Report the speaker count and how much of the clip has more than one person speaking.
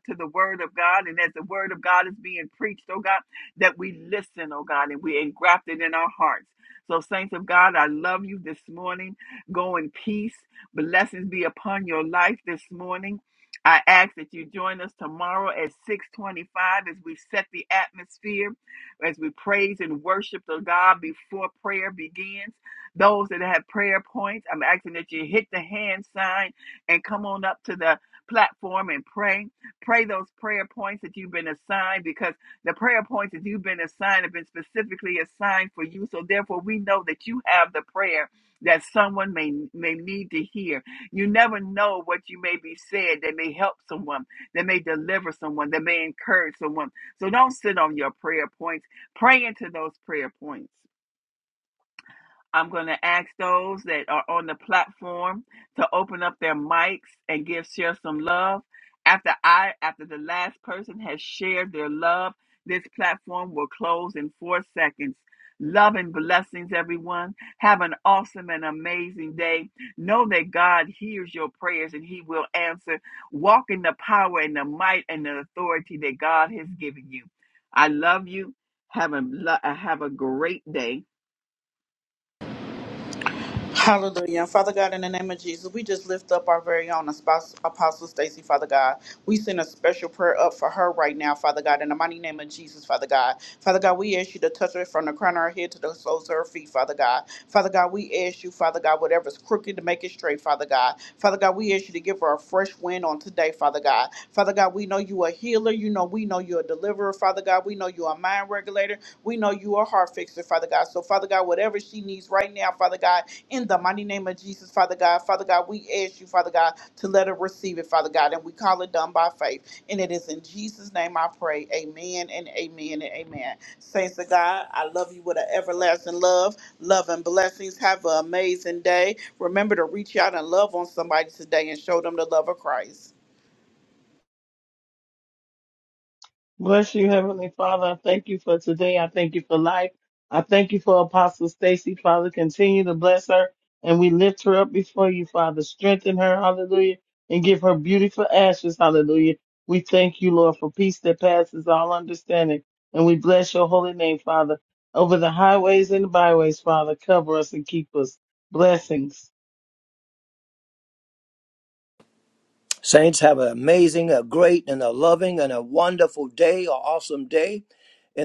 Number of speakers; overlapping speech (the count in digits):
4, no overlap